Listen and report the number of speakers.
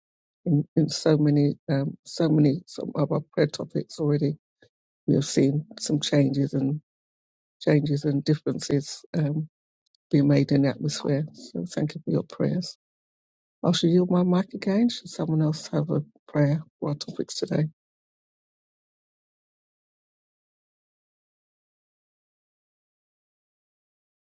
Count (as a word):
one